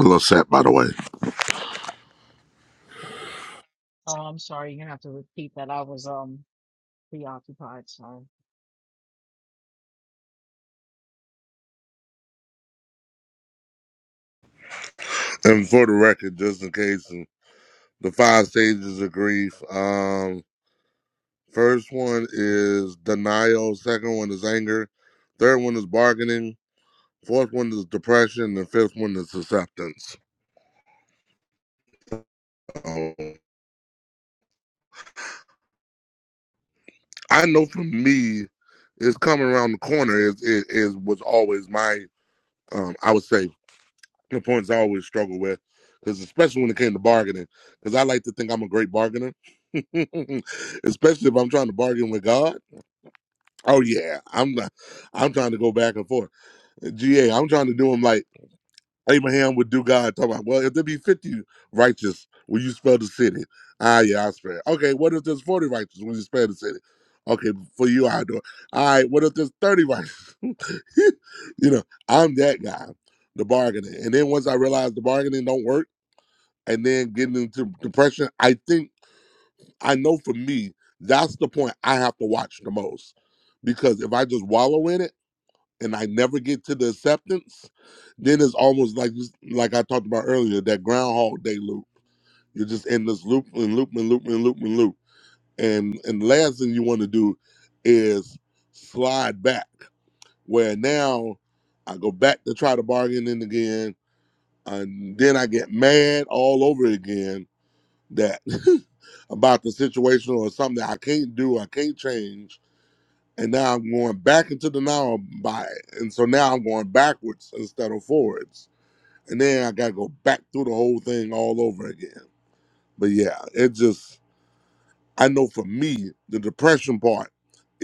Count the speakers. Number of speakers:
2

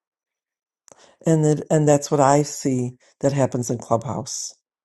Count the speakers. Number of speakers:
1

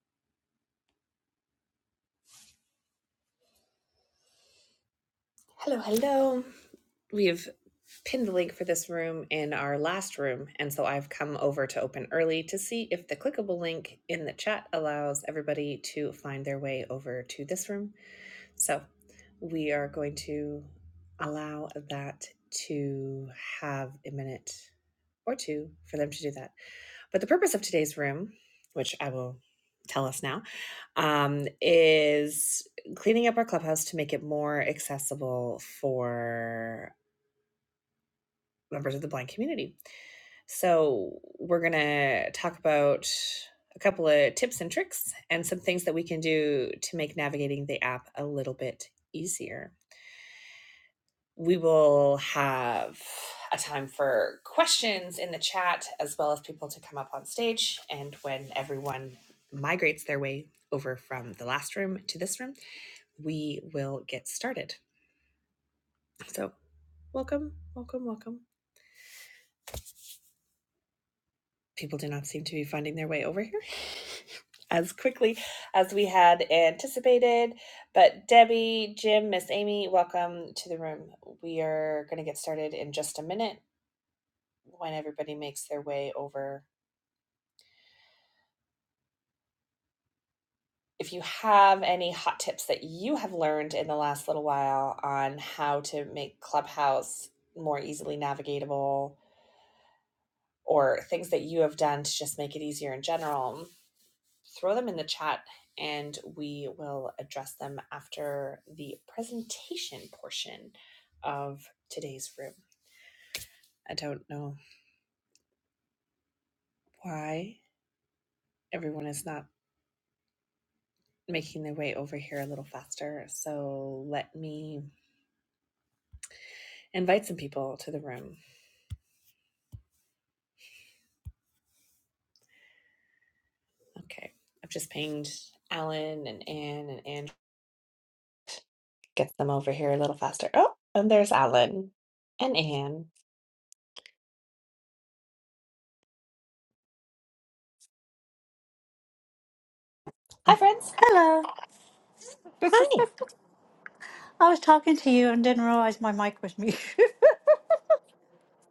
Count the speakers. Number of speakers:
2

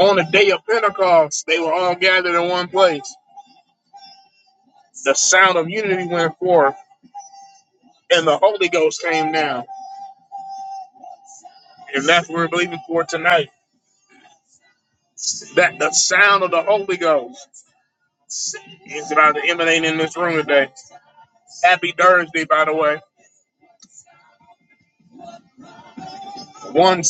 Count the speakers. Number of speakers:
1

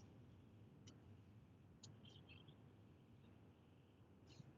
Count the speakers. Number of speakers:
0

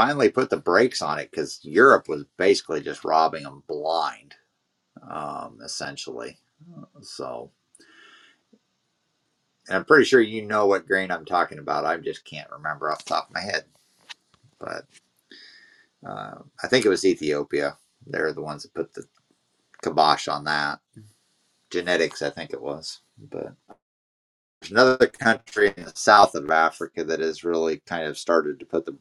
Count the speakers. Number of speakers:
1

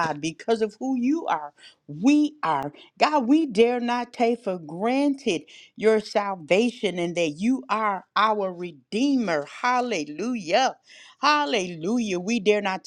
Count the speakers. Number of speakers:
1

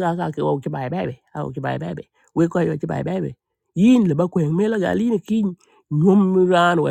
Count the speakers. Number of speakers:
1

